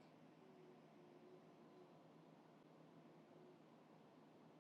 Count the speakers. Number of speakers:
zero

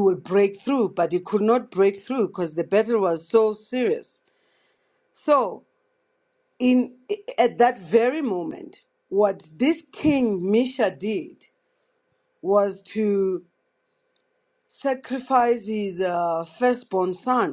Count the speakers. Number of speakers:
one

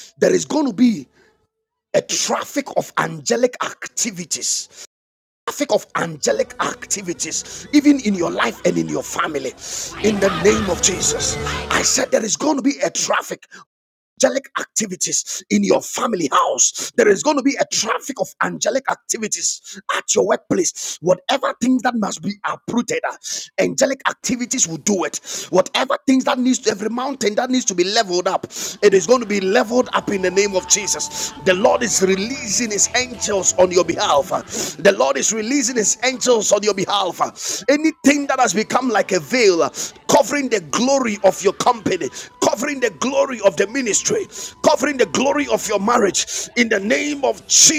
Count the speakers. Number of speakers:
one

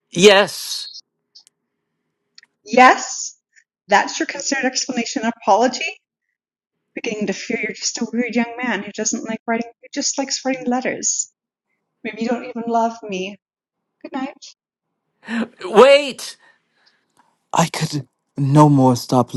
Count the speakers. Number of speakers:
three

